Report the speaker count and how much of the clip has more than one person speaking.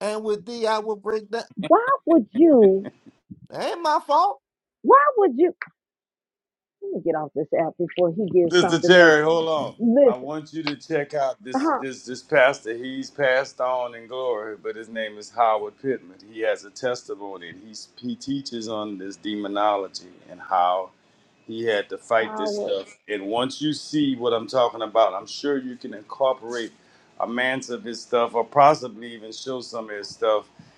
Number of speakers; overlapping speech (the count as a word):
three, about 5%